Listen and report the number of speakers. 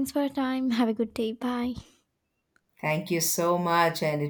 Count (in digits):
2